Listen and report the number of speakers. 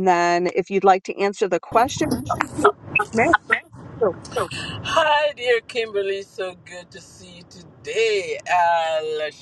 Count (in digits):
2